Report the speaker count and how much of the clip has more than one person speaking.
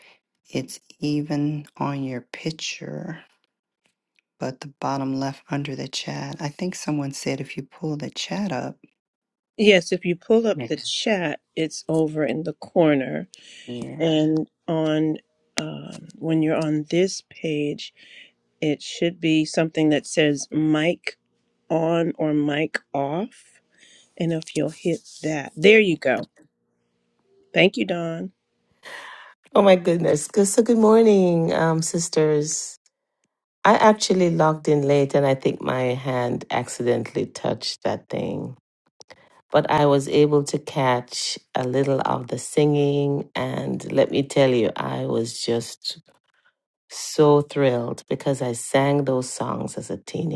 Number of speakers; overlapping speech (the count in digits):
3, about 1%